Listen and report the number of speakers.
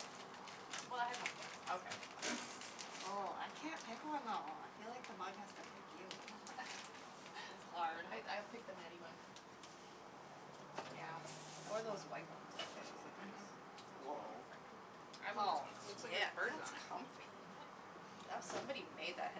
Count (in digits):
3